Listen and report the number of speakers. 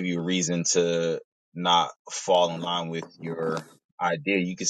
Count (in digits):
1